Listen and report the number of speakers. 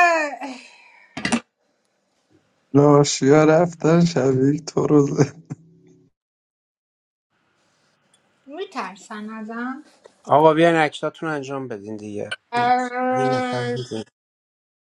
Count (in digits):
3